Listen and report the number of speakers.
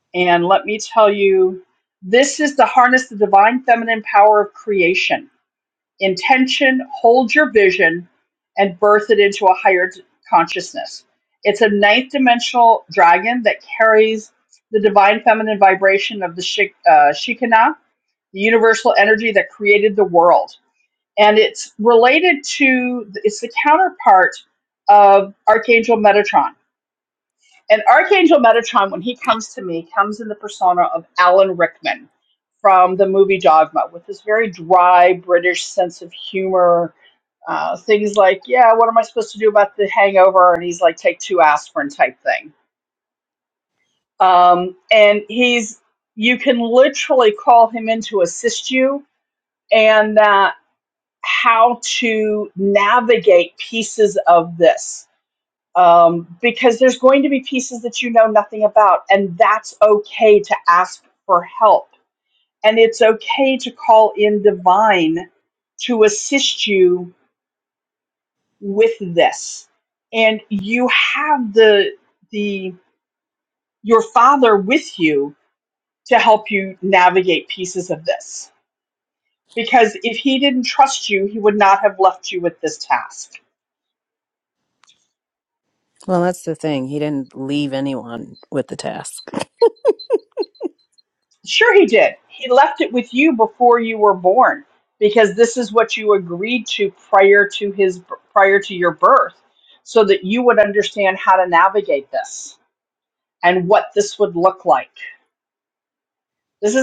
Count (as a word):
two